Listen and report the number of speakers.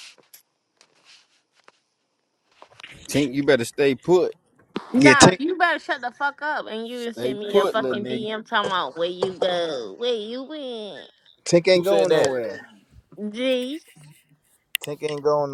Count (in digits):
3